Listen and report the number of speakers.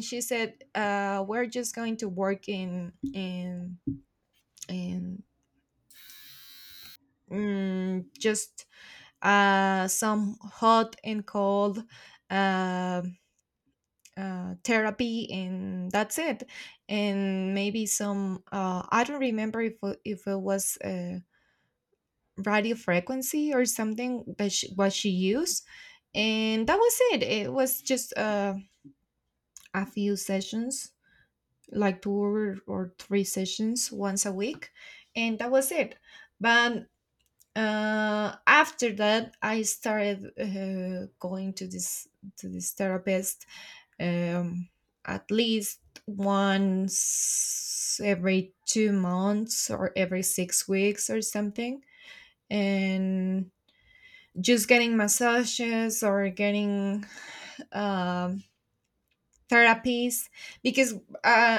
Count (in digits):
1